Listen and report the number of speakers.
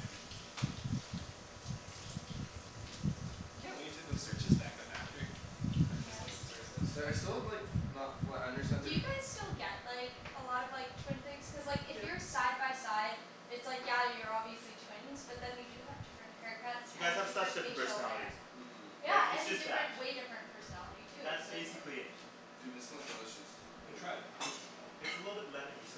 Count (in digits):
4